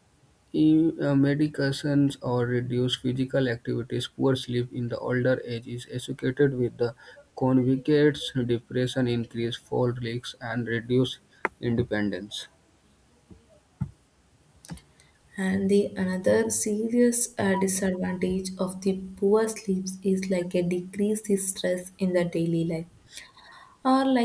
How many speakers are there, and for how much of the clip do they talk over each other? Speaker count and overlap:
two, no overlap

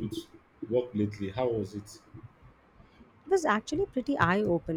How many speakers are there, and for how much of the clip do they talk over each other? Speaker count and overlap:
two, no overlap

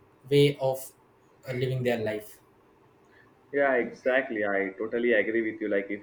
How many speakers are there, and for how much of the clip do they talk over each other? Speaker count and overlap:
two, no overlap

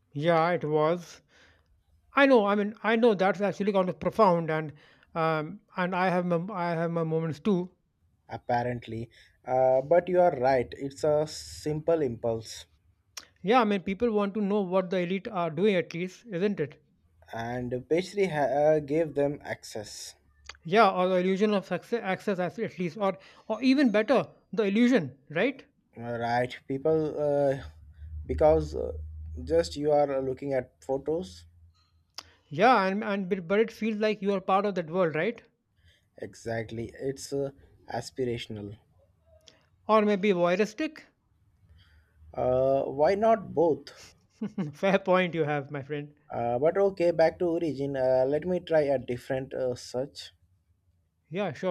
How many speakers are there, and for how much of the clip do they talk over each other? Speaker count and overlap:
two, no overlap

